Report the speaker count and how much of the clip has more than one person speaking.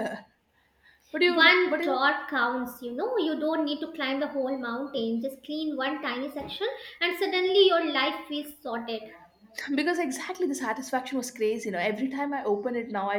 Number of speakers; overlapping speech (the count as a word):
two, about 5%